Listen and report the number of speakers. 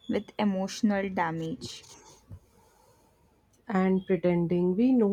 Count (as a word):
two